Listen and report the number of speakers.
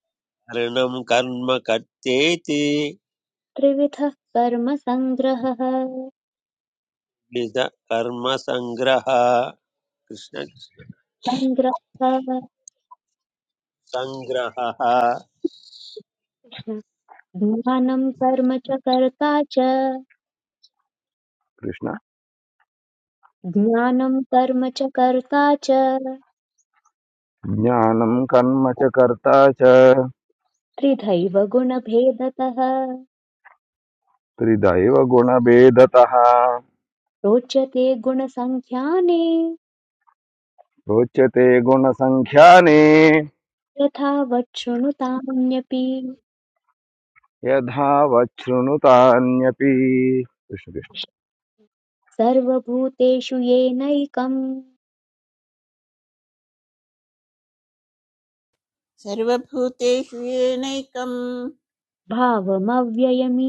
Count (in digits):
4